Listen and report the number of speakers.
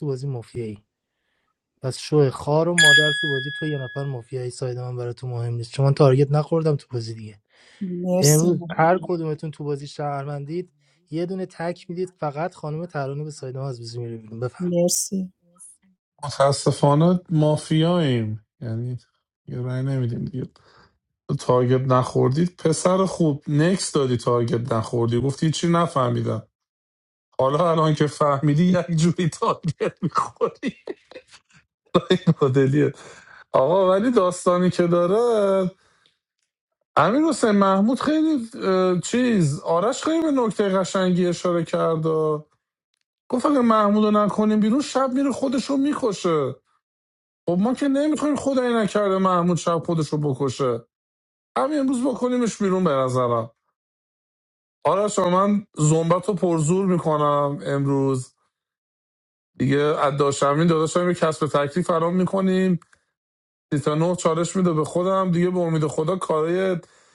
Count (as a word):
three